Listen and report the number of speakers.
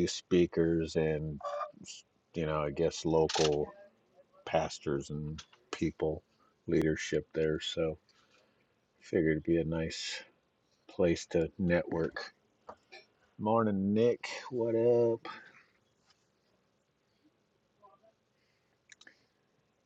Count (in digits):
1